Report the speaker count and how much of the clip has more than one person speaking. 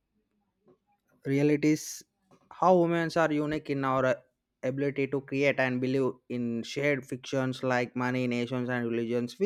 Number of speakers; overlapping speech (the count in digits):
1, no overlap